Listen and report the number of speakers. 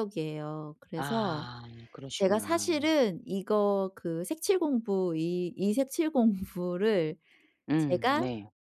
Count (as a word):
two